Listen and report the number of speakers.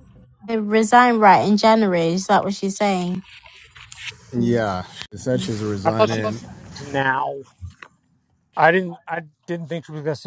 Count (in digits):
3